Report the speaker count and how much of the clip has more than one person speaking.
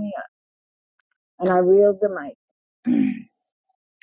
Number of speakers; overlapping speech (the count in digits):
1, no overlap